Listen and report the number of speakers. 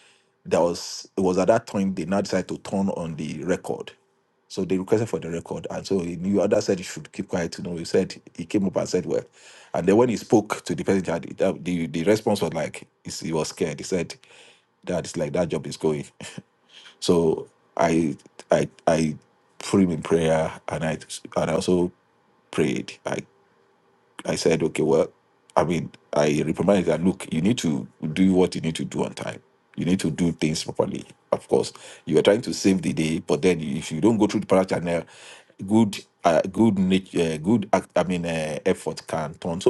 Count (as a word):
one